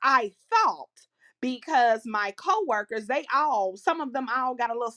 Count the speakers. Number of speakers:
one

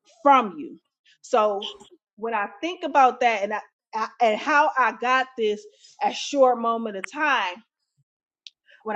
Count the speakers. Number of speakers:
one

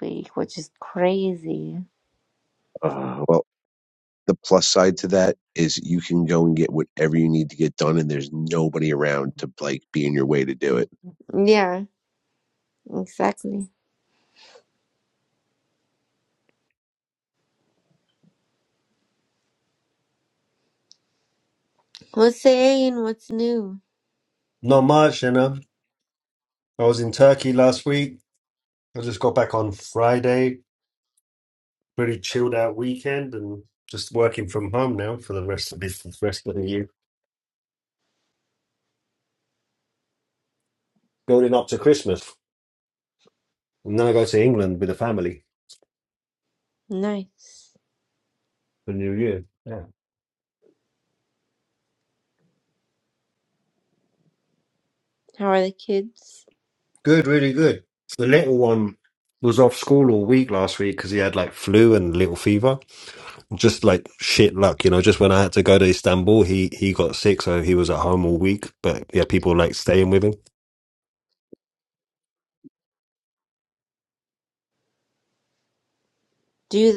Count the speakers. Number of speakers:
three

